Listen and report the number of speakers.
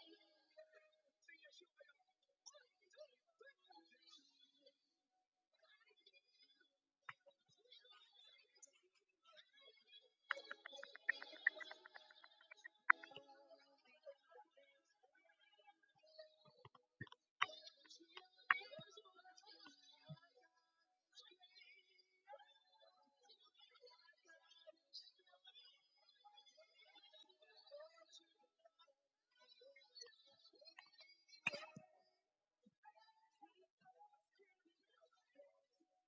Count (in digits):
0